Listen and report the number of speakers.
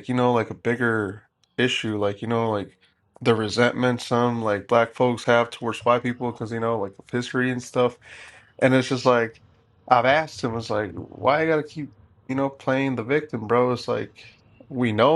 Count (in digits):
1